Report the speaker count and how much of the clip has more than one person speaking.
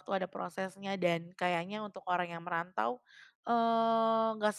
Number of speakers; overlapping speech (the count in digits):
1, no overlap